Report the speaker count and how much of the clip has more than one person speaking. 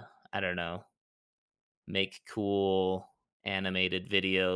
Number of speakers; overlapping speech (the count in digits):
1, no overlap